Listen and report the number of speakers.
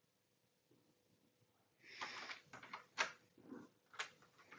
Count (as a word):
zero